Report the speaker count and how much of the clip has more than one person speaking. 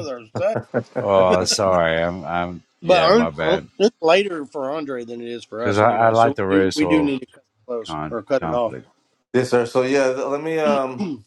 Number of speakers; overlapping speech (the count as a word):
three, about 28%